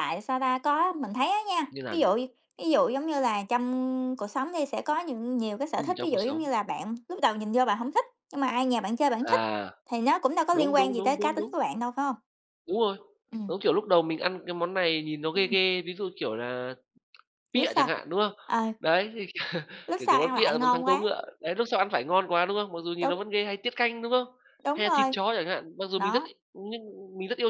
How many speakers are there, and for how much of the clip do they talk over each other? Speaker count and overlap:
2, about 18%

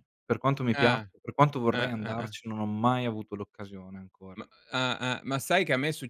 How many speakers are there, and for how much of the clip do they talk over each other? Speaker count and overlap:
2, about 16%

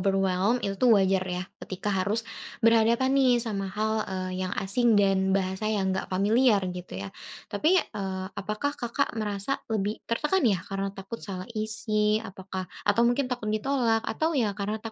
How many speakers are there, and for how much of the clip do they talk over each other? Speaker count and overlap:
1, no overlap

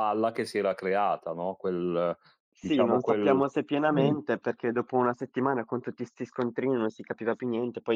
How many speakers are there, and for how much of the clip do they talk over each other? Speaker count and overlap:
2, about 10%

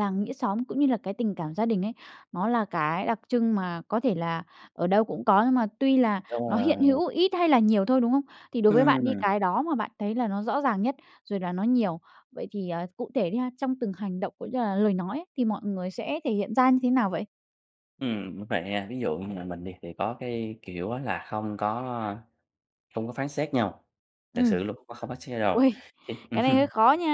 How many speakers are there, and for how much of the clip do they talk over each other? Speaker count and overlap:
2, about 6%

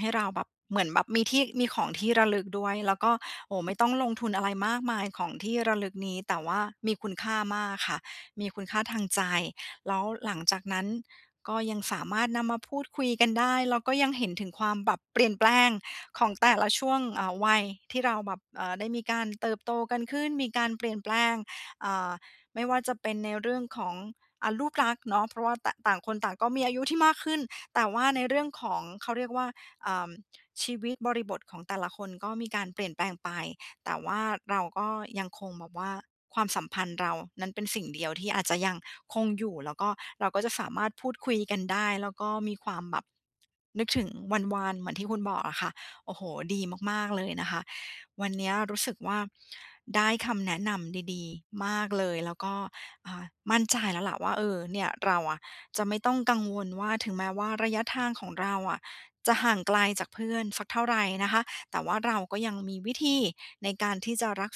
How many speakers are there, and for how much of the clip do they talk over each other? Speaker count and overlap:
1, no overlap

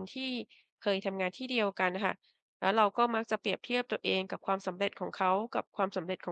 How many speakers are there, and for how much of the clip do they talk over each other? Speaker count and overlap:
1, no overlap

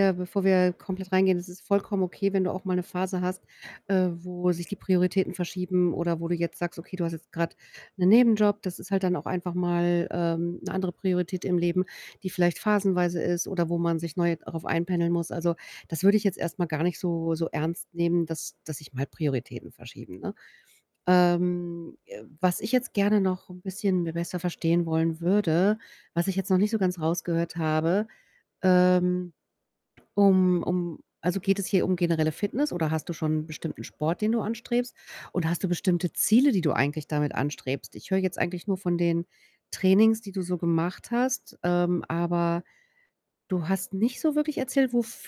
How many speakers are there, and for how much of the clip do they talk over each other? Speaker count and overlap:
1, no overlap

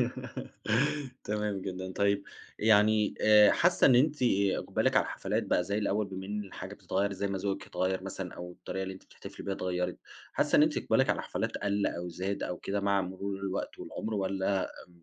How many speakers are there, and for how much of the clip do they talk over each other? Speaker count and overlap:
1, no overlap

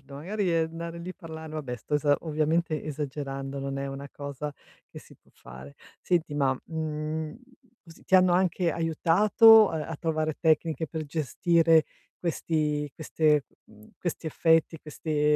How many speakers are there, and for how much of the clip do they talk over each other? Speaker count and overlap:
1, no overlap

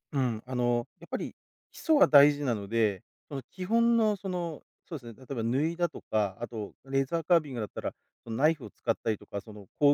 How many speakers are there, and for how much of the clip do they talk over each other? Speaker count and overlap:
1, no overlap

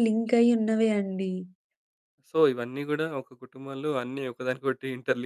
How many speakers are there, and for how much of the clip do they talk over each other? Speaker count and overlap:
2, no overlap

